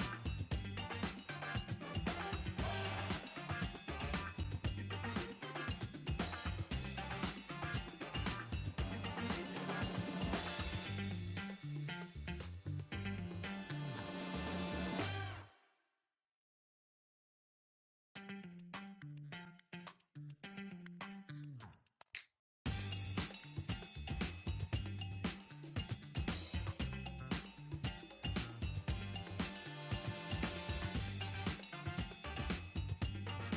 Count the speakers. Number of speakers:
0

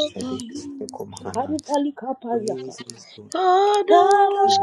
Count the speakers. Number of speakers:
3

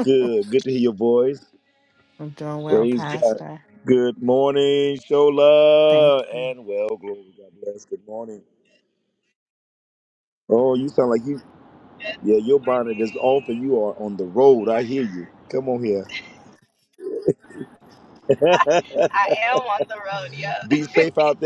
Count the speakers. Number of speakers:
3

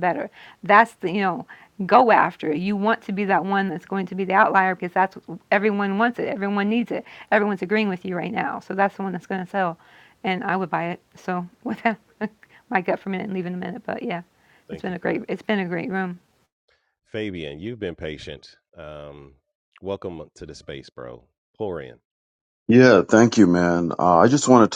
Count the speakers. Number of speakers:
3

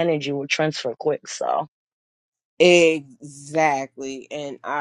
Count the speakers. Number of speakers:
2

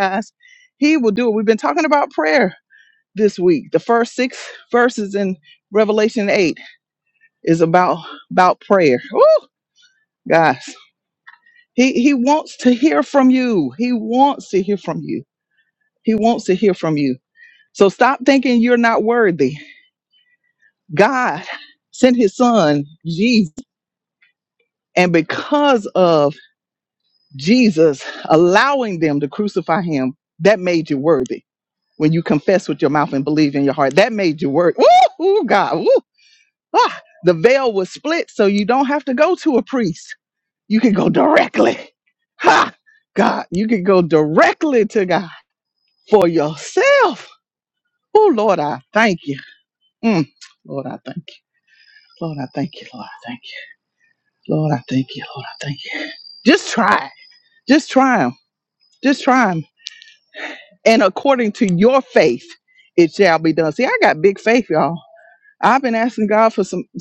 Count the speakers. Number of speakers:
1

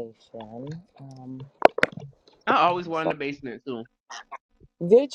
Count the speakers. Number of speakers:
2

